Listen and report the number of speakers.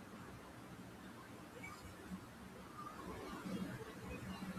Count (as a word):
zero